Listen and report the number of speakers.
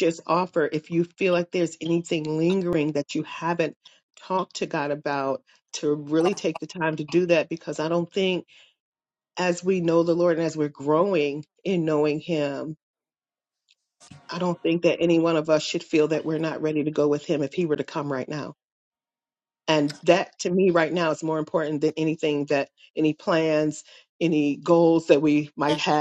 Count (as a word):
one